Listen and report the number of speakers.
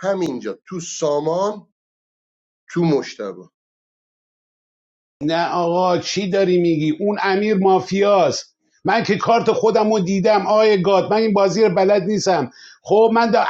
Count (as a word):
two